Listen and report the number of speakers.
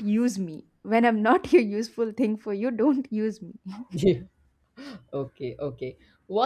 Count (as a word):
two